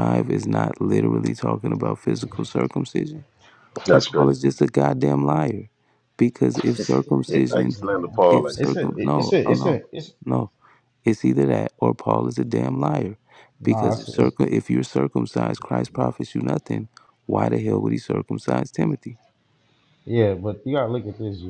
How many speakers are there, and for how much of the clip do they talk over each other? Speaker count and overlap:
3, about 17%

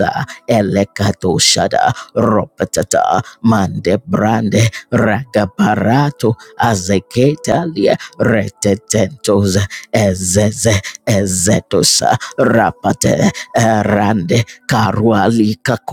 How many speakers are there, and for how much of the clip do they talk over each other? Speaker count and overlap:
1, no overlap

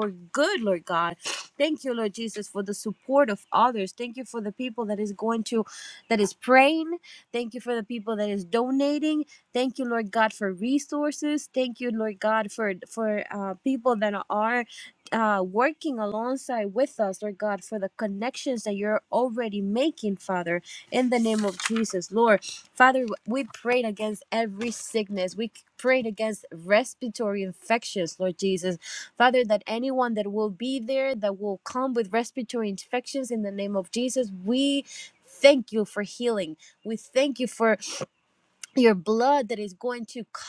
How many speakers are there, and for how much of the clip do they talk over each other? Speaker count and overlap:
1, no overlap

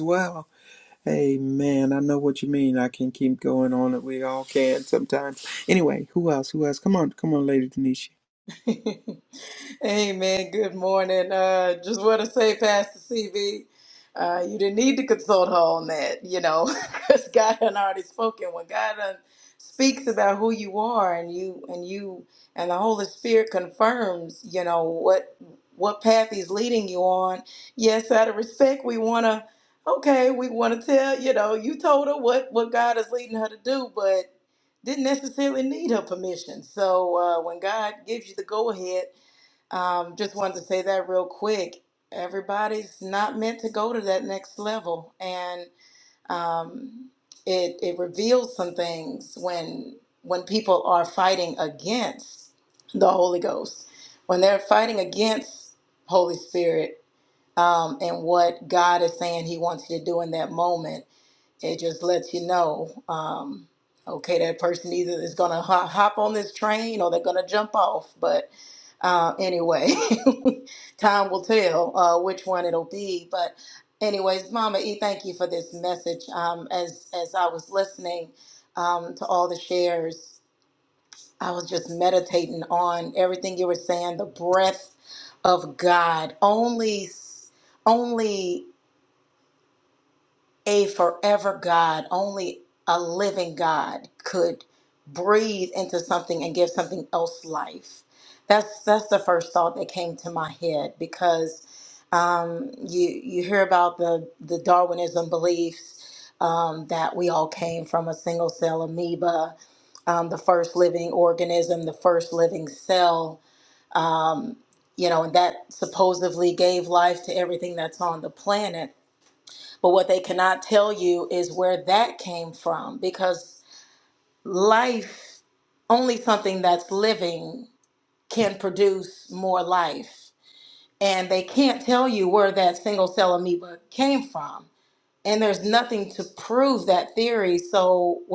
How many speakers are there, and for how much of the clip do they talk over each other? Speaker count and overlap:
2, no overlap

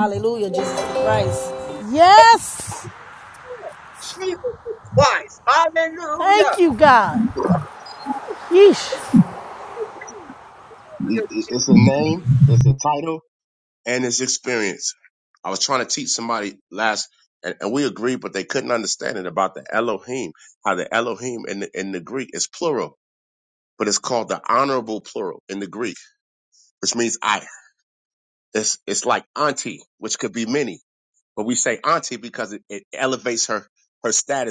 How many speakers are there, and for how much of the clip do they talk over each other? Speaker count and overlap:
4, about 3%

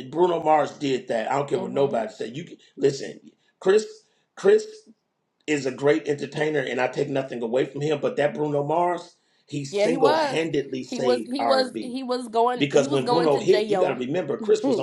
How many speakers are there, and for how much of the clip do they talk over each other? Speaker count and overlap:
2, about 23%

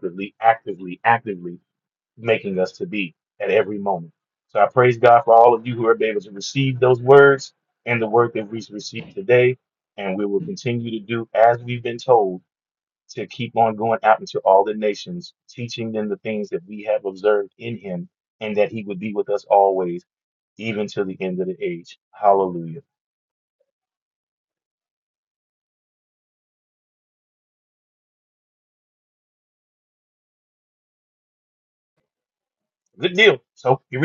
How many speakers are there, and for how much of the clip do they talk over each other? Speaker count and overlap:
1, no overlap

